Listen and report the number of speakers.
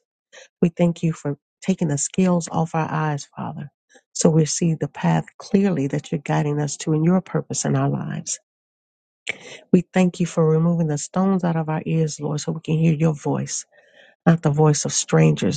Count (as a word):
one